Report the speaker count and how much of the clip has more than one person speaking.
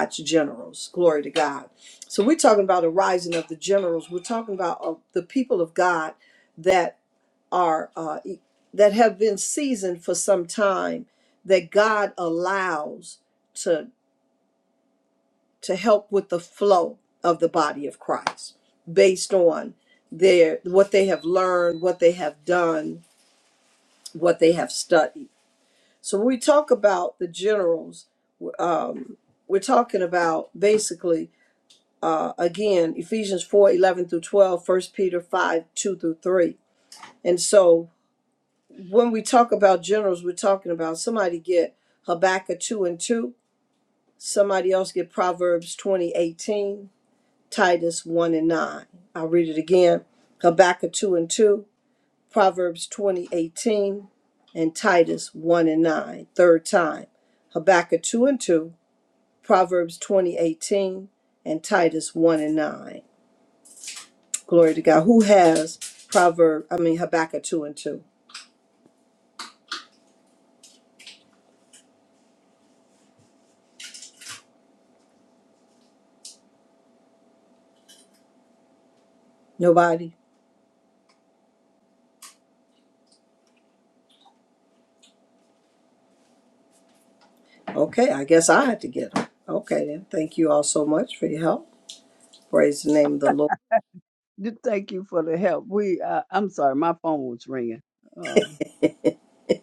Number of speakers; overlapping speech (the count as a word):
two, no overlap